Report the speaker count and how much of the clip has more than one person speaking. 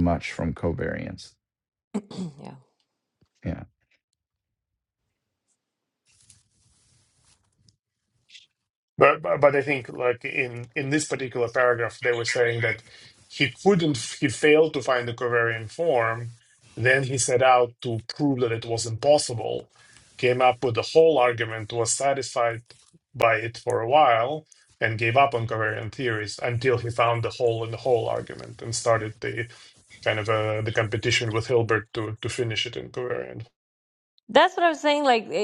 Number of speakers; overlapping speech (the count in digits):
3, no overlap